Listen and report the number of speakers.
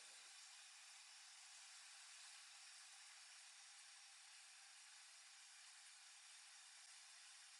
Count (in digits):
0